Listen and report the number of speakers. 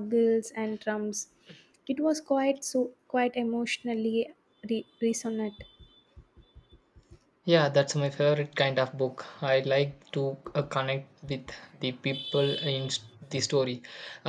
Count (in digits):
2